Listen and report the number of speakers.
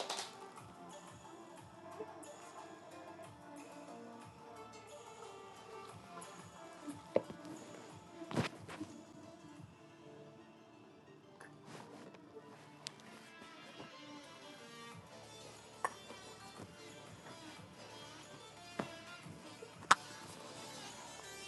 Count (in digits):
0